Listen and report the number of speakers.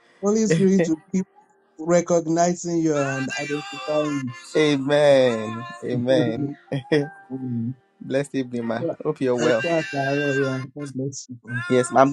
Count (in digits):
2